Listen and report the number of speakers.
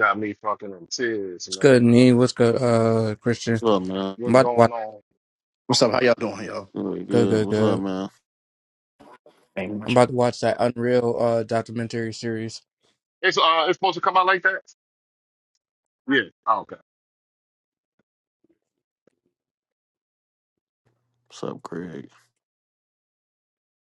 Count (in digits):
4